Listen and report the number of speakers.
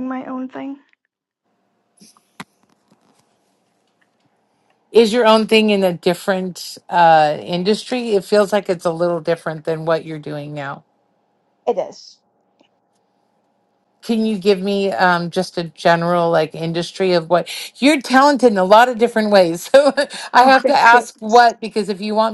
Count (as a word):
two